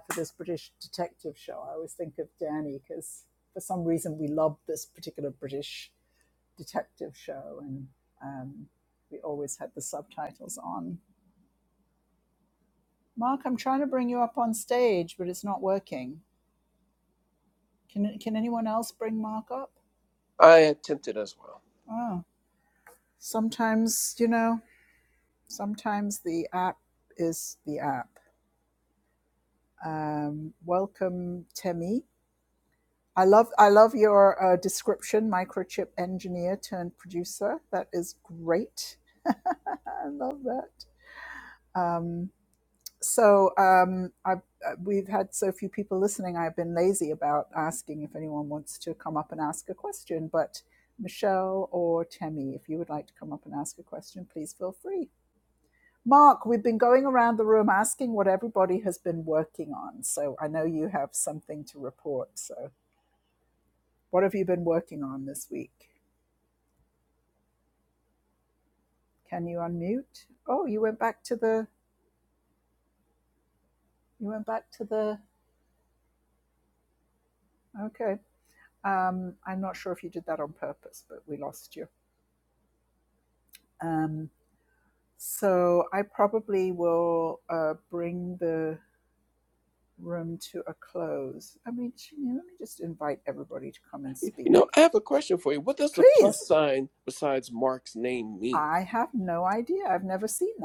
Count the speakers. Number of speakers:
2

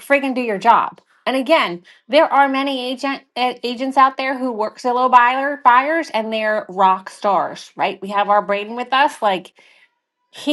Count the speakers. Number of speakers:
1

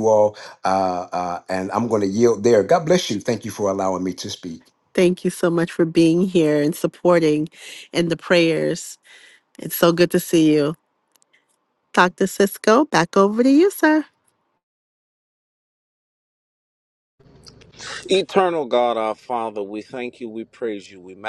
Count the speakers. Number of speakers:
3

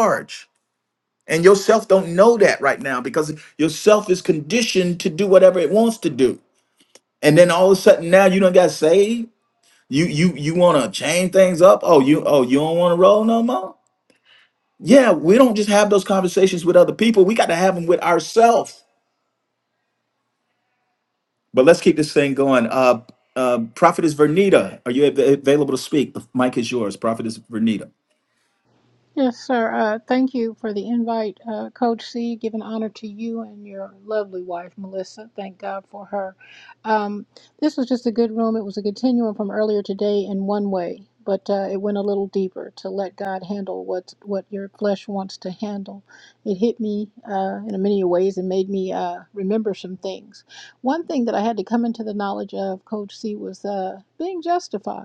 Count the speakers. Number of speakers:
2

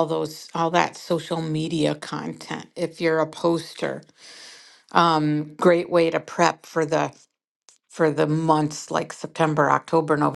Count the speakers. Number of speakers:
1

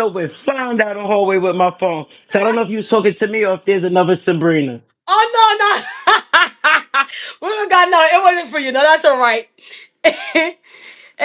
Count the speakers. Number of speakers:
2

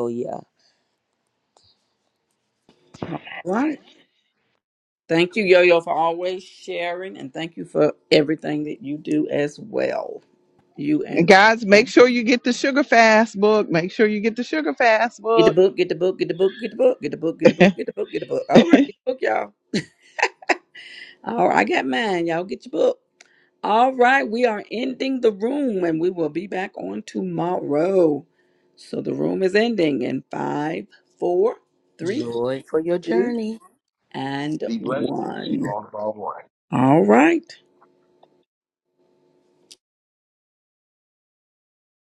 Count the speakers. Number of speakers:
4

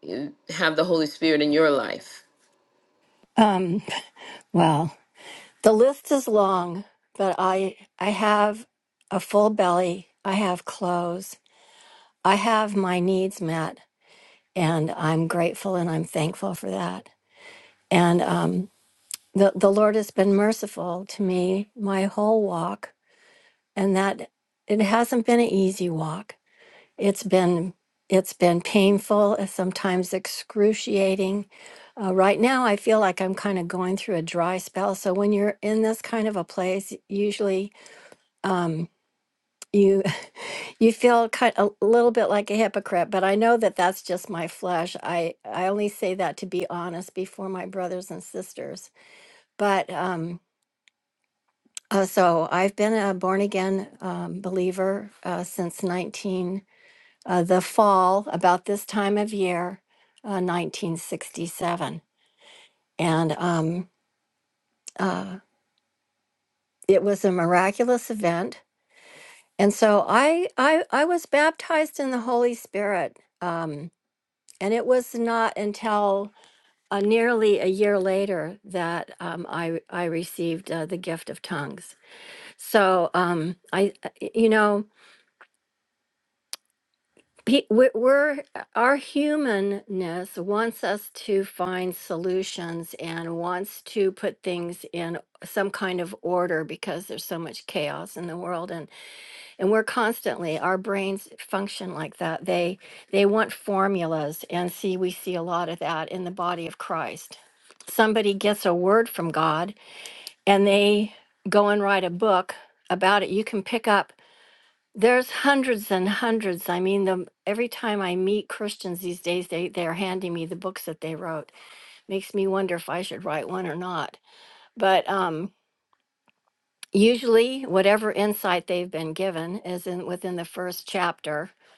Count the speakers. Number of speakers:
2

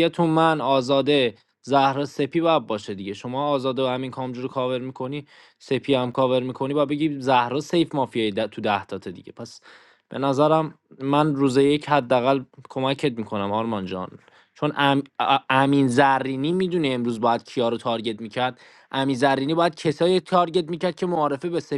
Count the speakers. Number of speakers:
1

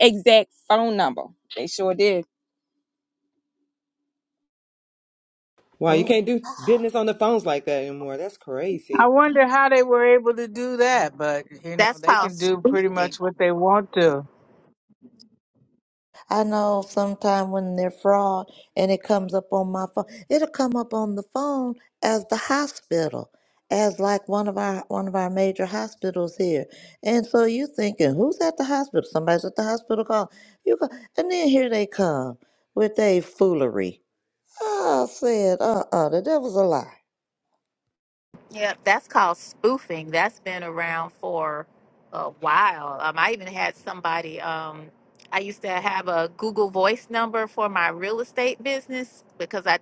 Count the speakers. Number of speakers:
5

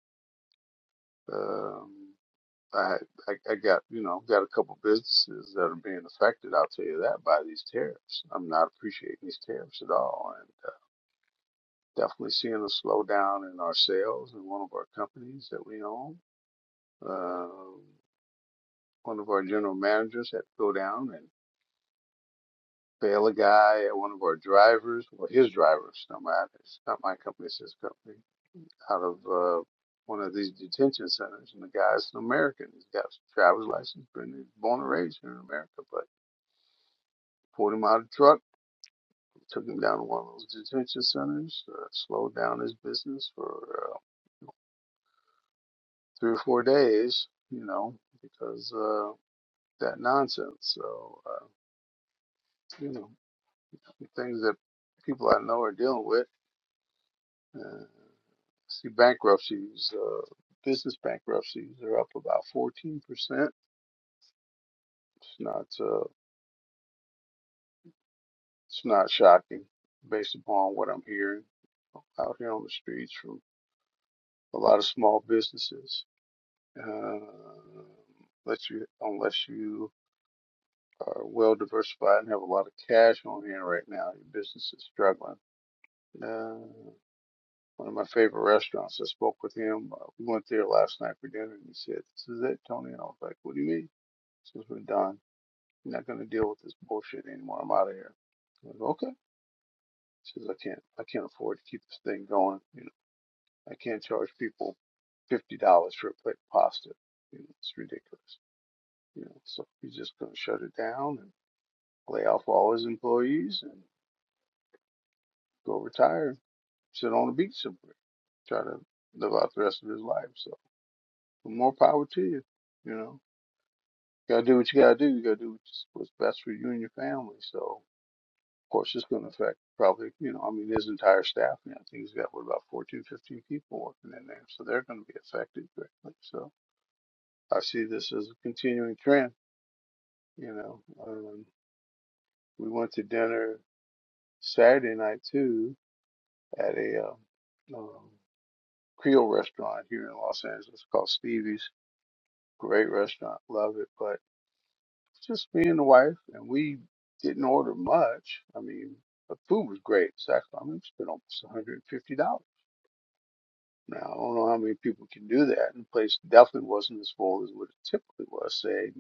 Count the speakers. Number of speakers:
1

